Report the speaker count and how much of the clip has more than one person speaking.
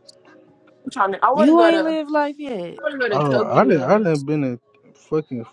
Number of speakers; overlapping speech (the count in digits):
3, about 26%